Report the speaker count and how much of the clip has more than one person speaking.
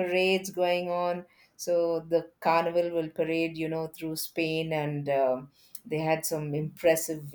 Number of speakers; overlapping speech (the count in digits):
1, no overlap